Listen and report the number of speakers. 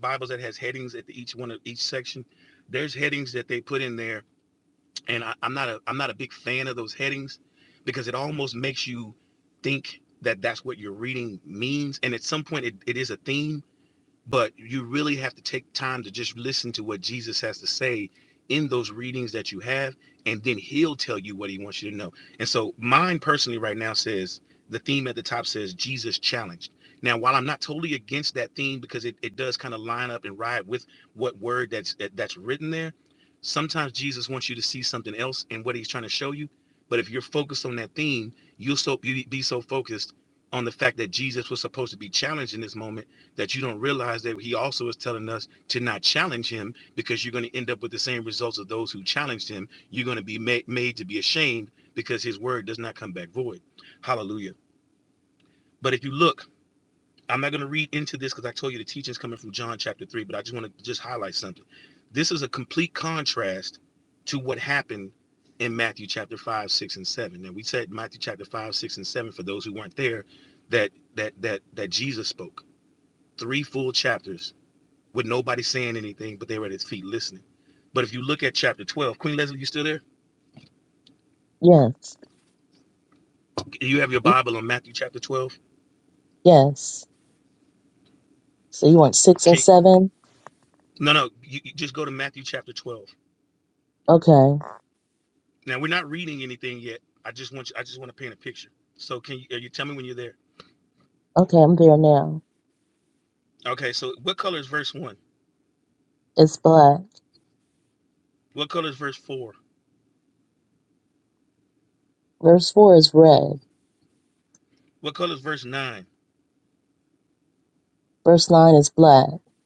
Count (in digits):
2